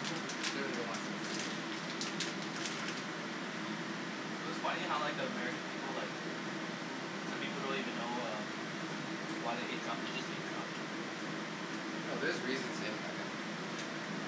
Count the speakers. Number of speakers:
2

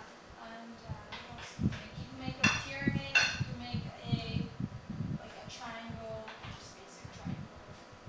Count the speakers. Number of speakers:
1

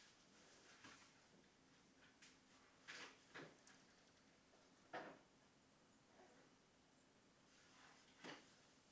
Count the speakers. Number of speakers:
0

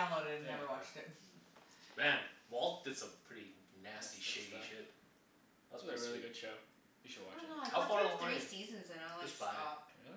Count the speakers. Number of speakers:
4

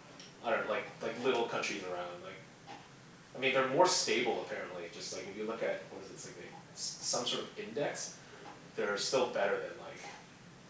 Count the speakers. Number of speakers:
1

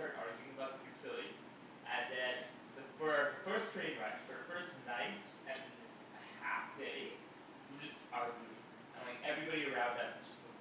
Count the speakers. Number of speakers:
1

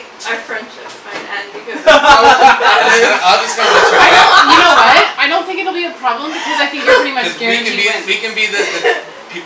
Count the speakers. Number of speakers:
3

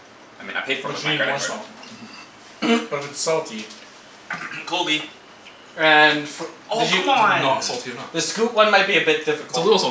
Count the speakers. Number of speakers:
4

